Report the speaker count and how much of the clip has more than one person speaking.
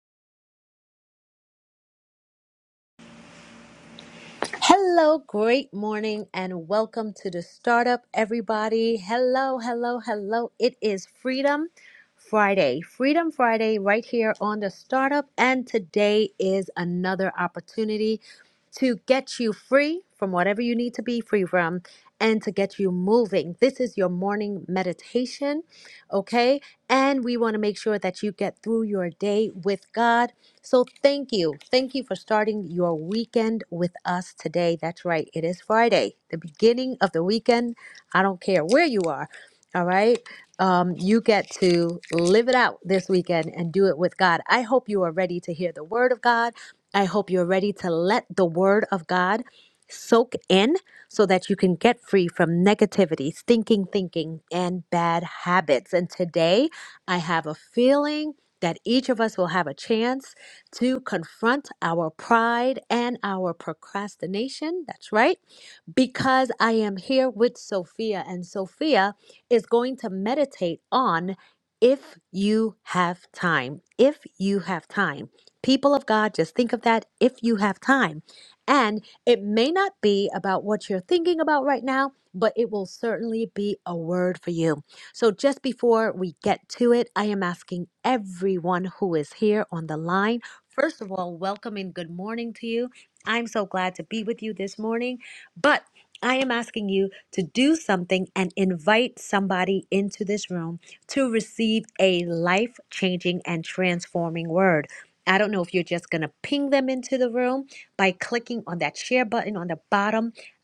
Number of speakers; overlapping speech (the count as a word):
one, no overlap